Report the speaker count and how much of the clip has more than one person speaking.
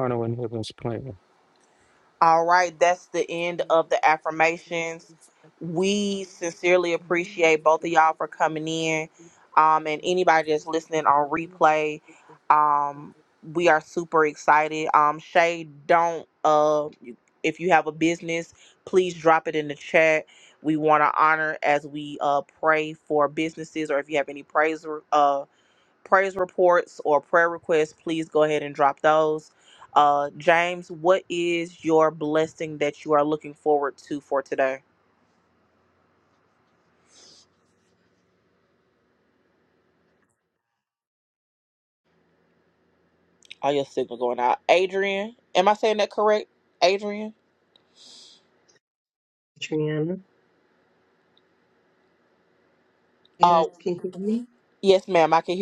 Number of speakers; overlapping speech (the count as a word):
three, about 1%